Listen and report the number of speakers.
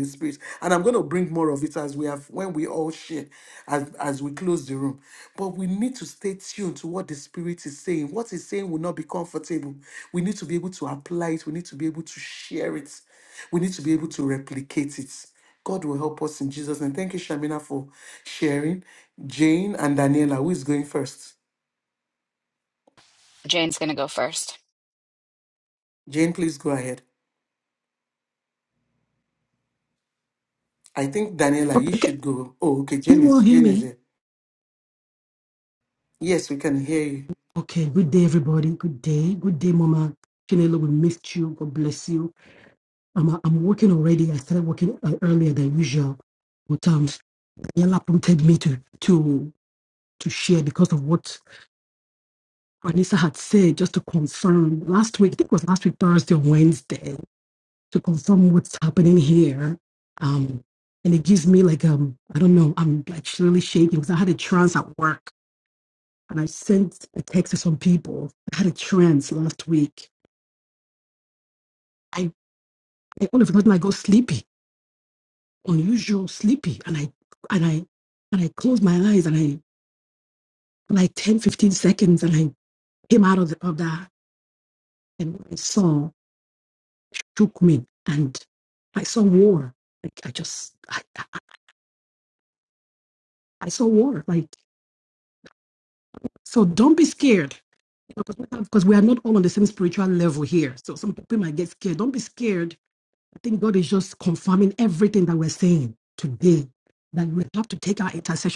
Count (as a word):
three